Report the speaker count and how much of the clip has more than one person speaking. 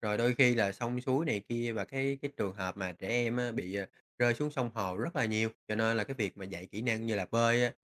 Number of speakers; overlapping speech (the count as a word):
one, no overlap